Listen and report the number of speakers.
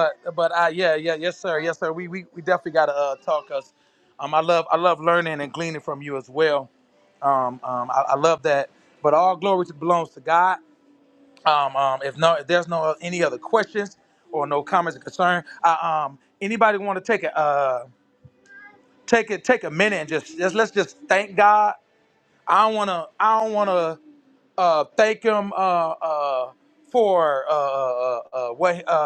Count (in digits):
1